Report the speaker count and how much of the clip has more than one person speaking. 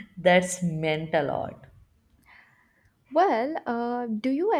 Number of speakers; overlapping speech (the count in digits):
2, no overlap